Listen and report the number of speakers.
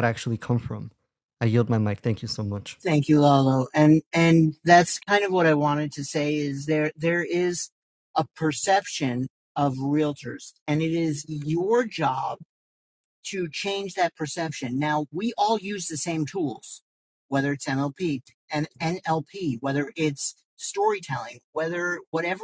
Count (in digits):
2